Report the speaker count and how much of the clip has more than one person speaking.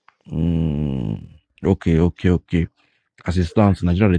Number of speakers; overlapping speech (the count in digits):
1, no overlap